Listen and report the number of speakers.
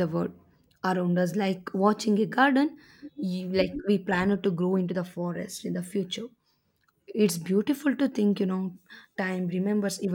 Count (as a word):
one